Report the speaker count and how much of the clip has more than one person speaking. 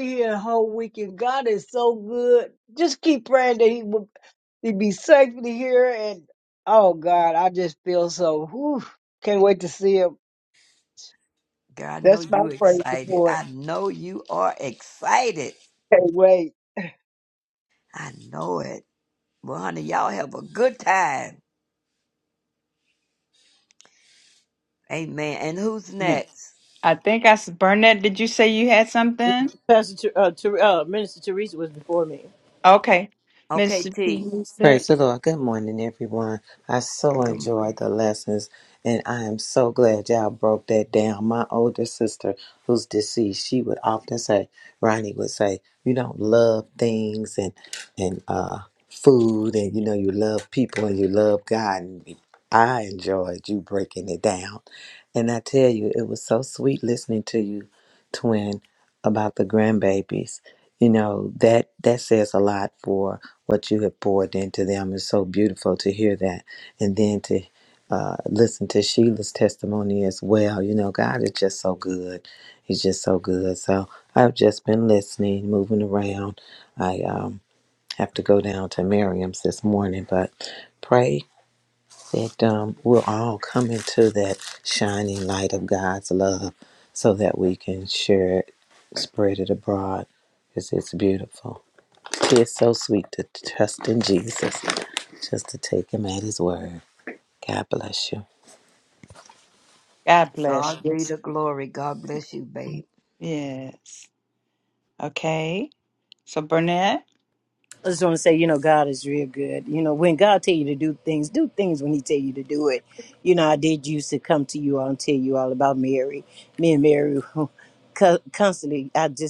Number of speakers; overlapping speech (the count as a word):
five, about 3%